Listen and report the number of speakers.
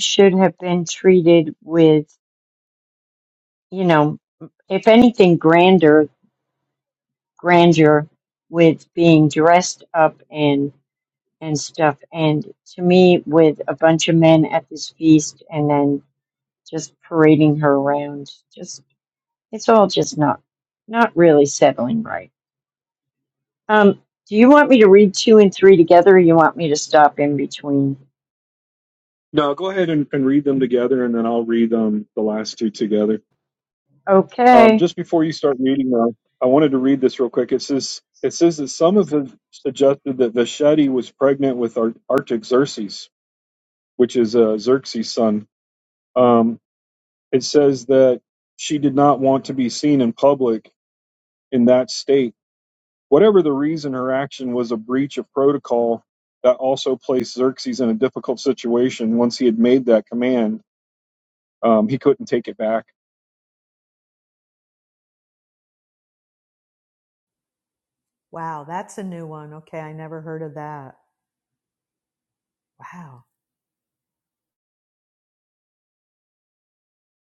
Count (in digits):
3